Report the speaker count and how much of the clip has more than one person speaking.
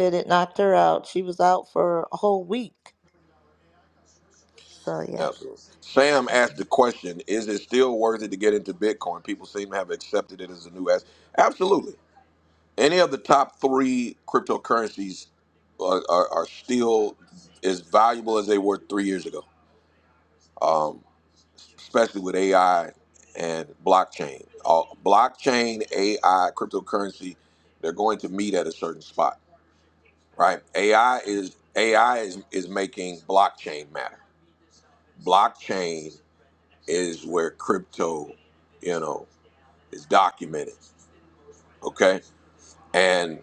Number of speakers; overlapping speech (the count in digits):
2, under 1%